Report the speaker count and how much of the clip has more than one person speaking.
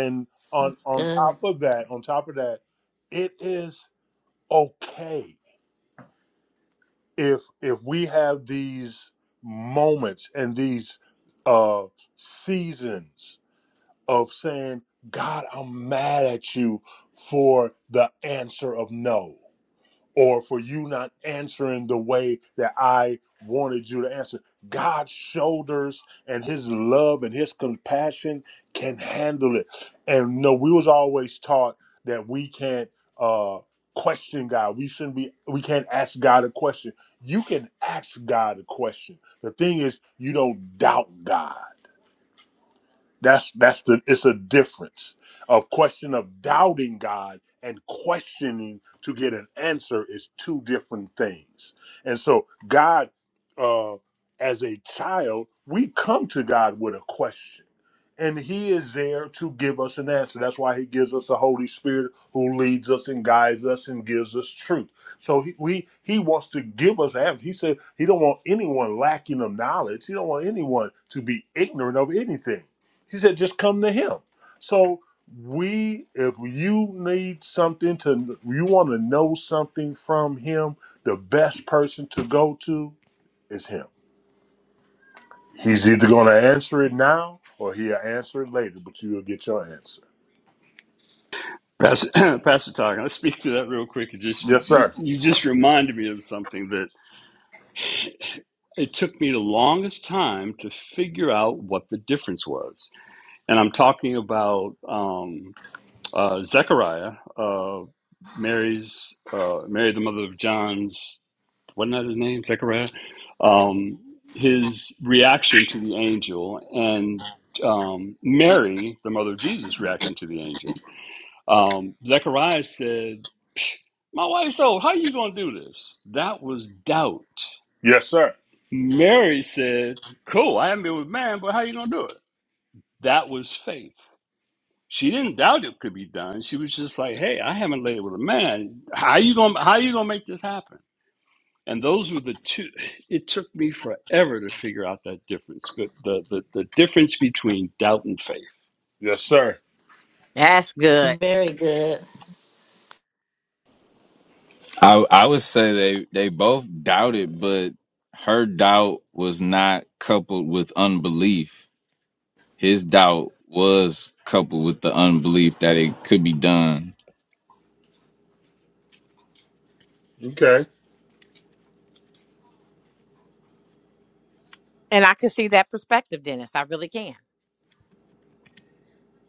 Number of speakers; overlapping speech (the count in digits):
5, about 1%